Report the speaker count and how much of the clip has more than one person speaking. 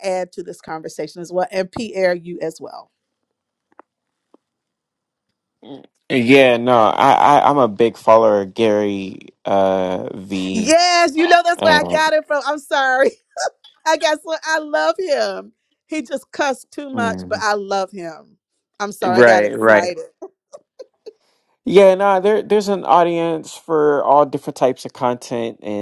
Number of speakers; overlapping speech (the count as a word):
two, about 8%